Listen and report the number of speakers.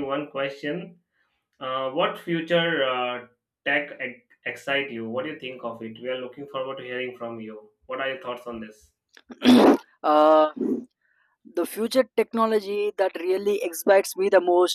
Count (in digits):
2